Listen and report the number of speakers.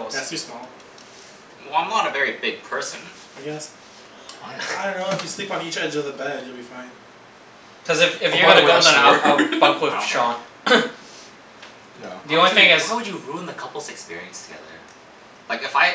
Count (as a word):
four